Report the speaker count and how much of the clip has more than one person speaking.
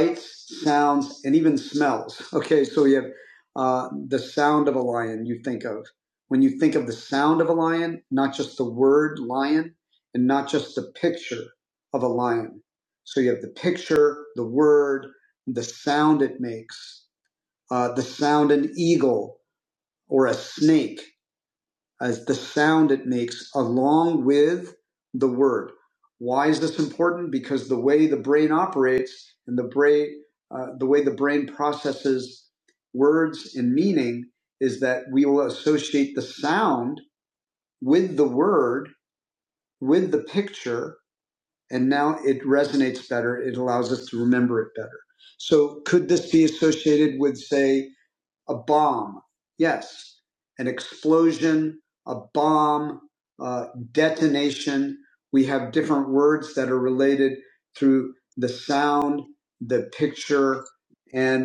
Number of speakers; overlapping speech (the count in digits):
1, no overlap